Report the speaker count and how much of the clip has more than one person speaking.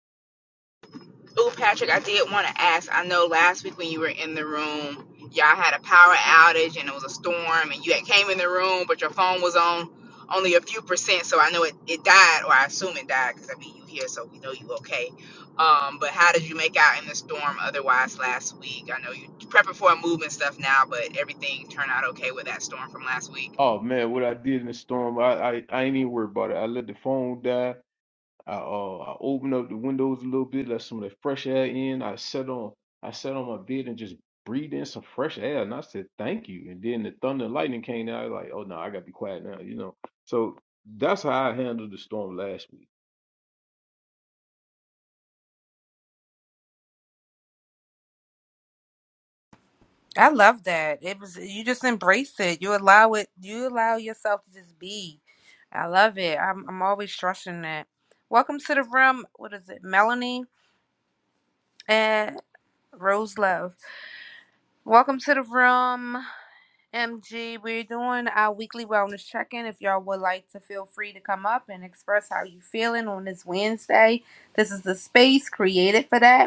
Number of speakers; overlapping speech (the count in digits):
3, no overlap